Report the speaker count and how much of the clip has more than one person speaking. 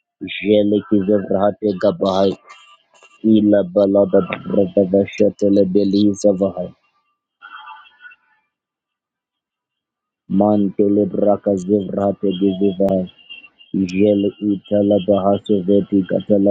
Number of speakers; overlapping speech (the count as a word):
one, no overlap